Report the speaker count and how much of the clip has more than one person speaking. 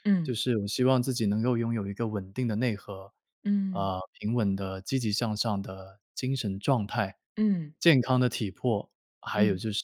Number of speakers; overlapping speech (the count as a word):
two, about 3%